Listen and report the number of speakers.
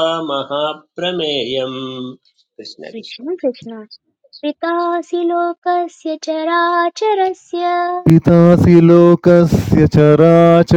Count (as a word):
three